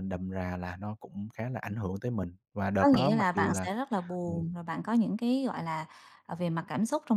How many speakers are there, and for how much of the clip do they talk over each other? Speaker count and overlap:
two, about 14%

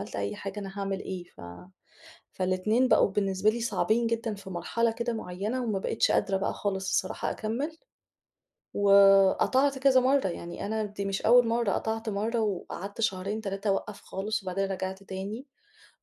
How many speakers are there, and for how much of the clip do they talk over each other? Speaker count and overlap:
one, no overlap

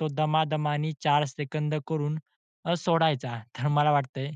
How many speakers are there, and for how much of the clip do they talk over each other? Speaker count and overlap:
one, no overlap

